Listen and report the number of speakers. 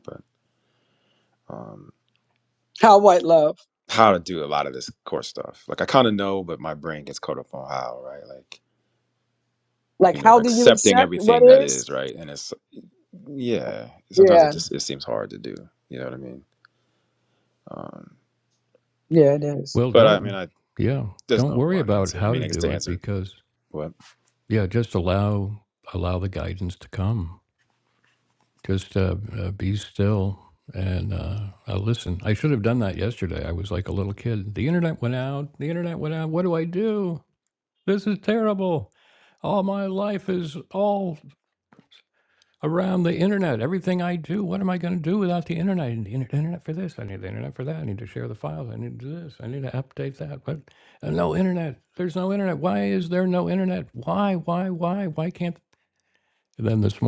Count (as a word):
three